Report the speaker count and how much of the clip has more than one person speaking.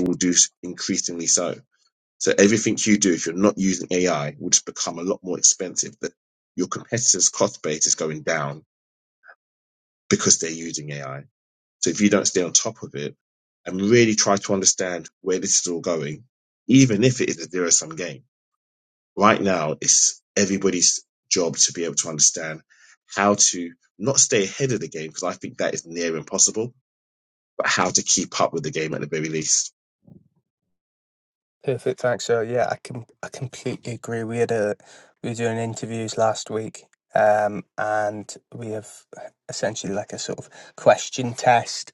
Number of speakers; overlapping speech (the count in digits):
2, no overlap